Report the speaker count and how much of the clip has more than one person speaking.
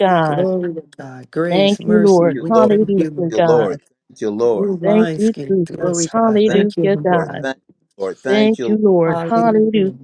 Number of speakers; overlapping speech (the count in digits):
3, about 68%